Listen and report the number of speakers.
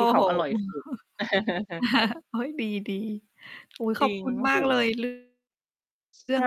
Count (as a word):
two